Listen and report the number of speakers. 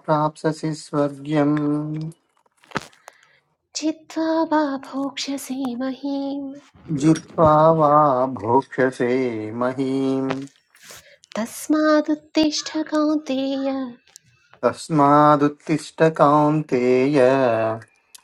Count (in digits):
2